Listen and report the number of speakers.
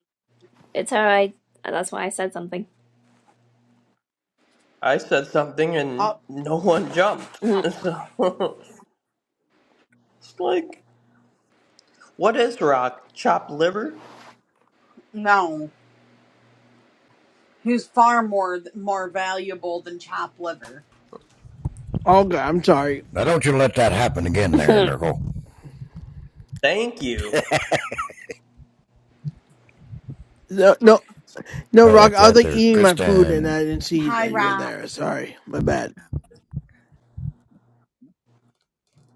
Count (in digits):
5